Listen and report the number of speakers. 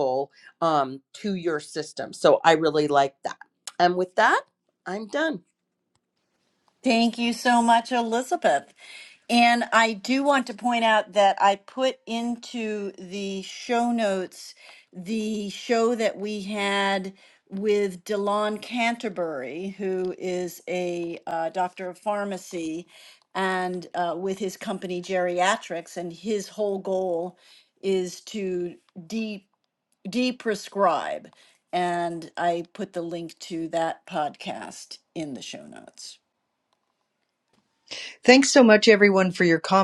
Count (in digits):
3